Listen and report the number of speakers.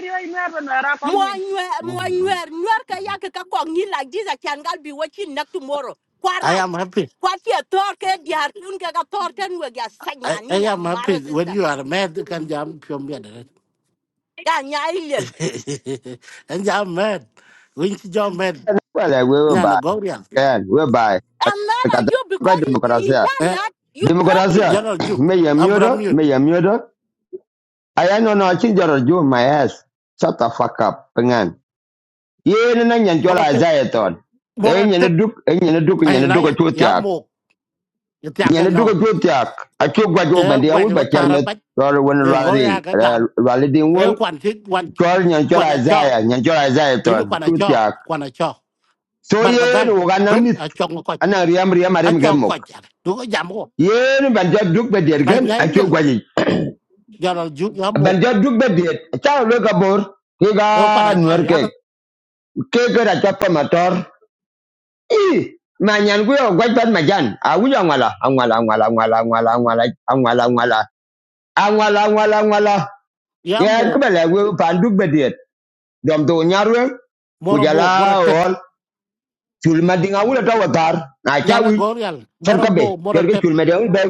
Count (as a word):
four